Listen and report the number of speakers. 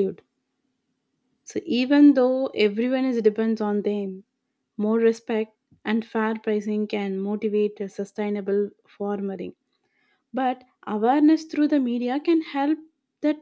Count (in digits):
1